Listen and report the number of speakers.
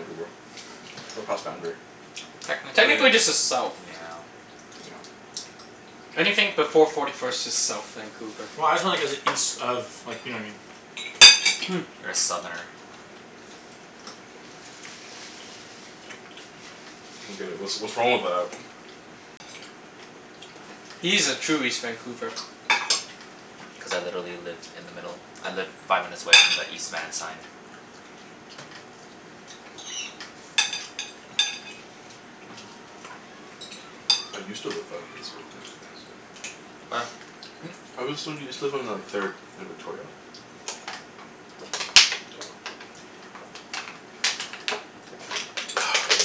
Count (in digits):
4